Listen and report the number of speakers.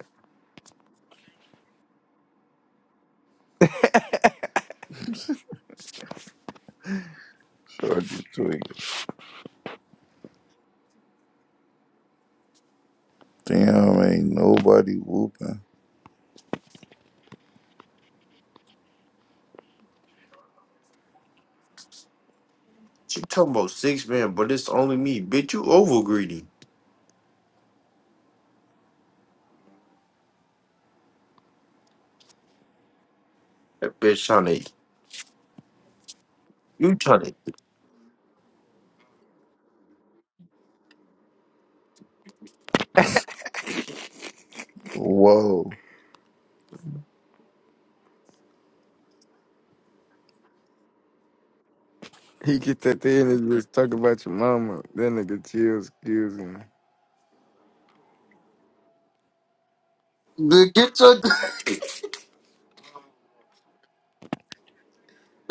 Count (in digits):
3